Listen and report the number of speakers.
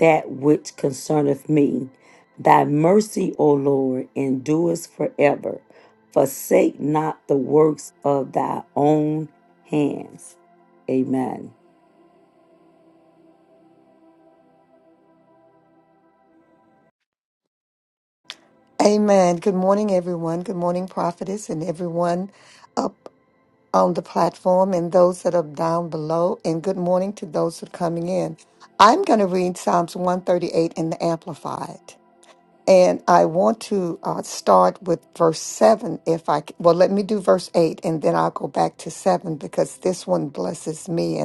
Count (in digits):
2